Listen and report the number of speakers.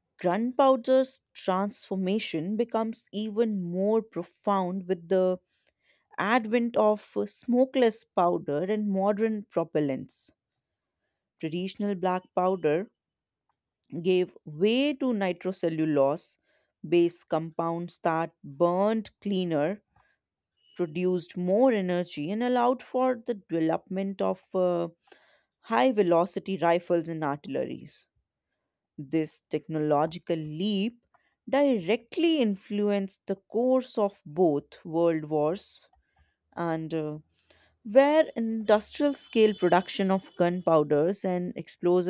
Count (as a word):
one